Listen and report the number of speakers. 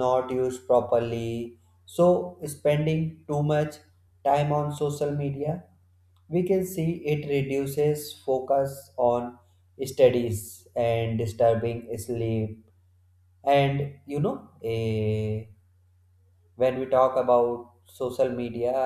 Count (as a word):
one